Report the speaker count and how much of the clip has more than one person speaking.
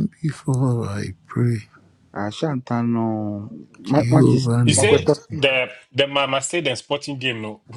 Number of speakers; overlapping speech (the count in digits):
3, about 17%